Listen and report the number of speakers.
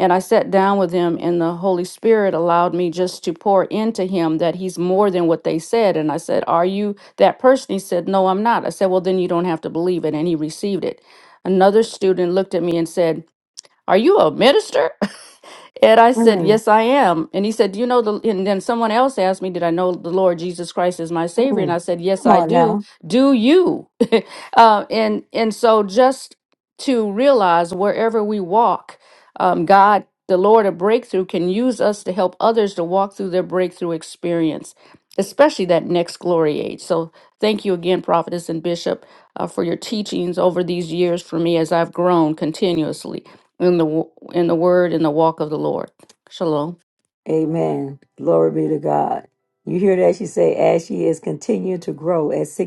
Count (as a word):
two